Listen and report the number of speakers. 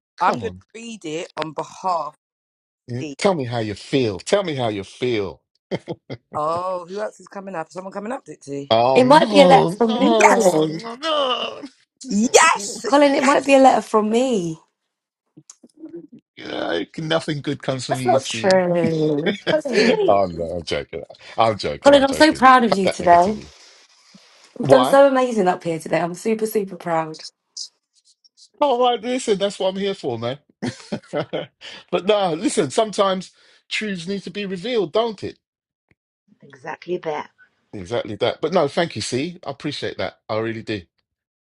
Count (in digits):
4